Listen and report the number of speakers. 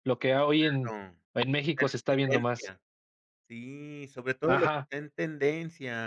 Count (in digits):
2